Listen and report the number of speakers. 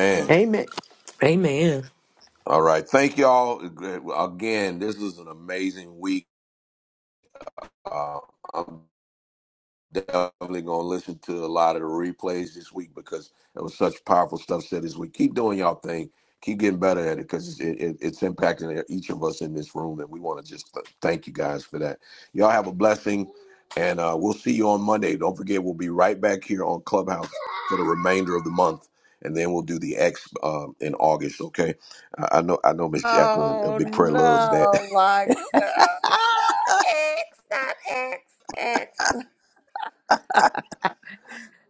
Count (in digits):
3